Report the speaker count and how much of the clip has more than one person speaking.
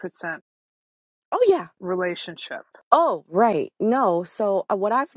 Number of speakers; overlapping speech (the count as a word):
two, no overlap